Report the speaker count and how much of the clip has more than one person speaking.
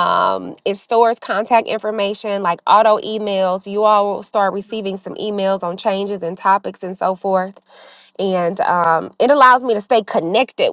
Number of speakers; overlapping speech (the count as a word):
one, no overlap